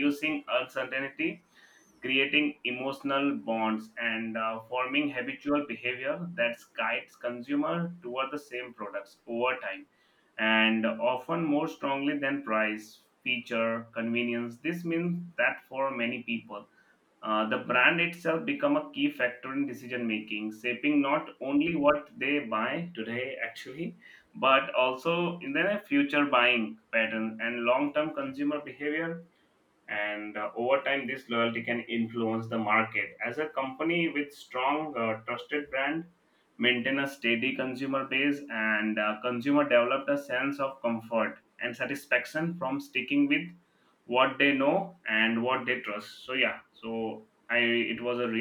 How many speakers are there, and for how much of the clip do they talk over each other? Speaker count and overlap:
one, no overlap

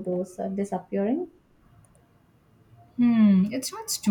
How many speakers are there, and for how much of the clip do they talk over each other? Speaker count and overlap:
two, no overlap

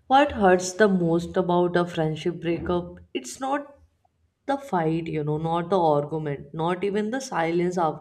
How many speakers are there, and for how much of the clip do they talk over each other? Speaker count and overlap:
one, no overlap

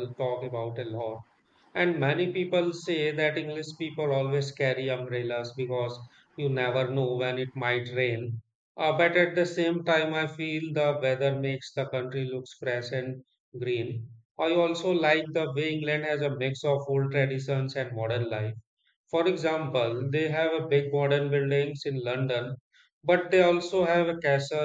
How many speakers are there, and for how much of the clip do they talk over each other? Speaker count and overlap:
one, no overlap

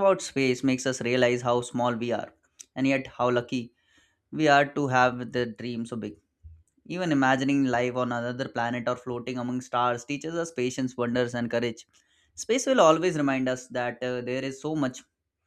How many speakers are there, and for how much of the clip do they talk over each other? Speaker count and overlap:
one, no overlap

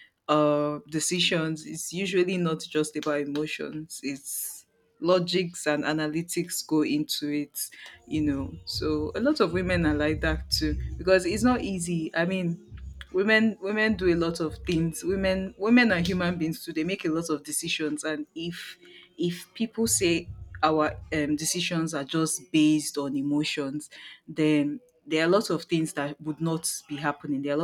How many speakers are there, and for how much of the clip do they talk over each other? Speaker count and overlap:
one, no overlap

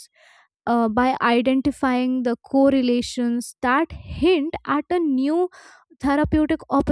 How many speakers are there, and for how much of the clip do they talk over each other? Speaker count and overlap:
one, no overlap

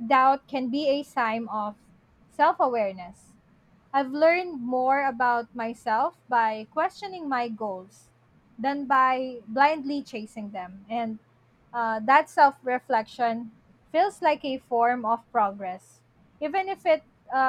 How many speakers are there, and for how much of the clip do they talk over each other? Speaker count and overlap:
one, no overlap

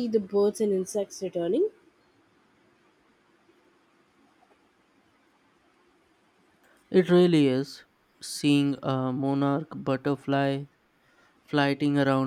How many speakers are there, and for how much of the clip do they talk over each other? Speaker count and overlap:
two, no overlap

